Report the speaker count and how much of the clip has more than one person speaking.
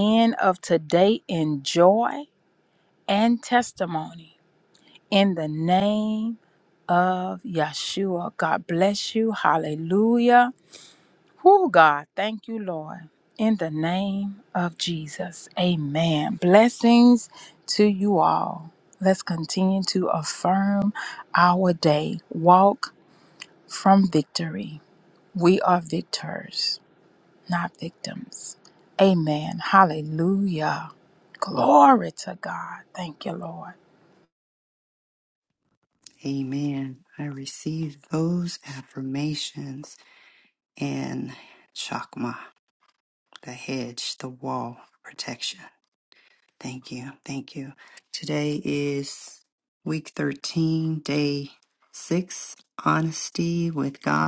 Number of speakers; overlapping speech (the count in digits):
2, no overlap